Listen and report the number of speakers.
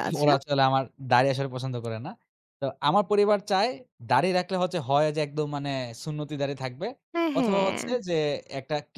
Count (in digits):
2